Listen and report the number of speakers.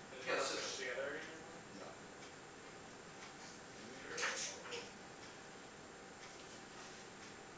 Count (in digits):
2